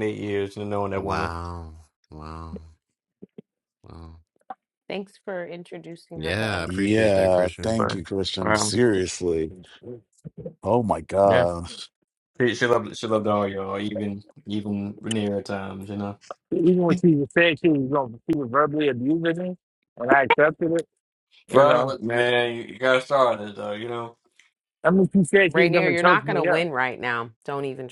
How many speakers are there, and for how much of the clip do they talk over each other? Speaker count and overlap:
five, about 15%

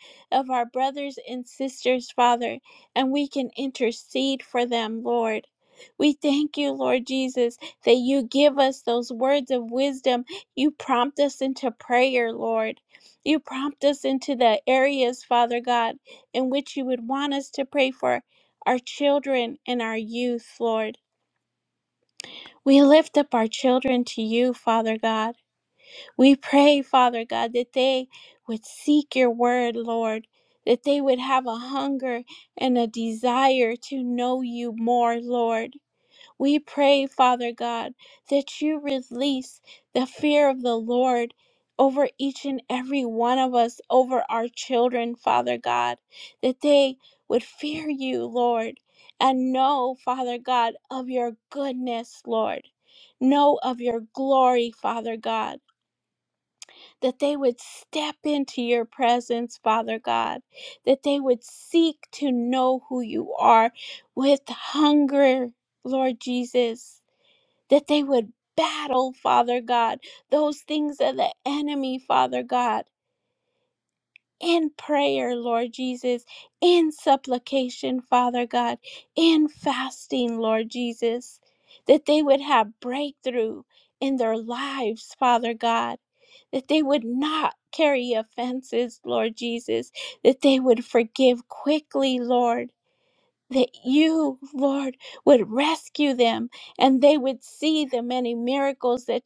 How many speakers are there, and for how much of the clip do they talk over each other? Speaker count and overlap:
one, no overlap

